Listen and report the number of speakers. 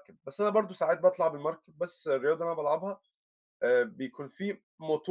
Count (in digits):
1